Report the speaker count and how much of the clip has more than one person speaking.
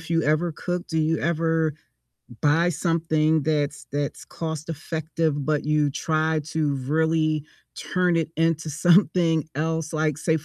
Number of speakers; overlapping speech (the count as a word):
one, no overlap